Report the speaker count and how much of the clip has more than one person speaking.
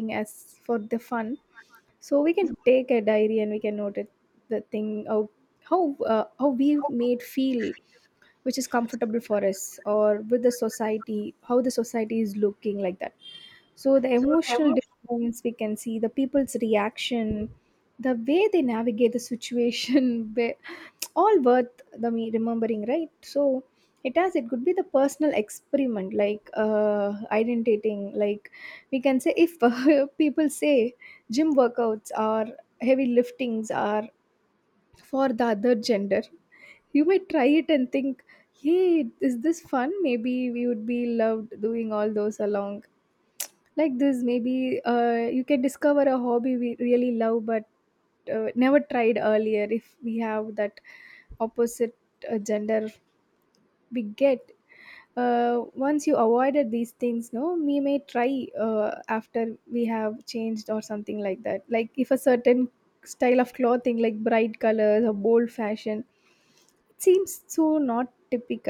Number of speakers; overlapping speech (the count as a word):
one, no overlap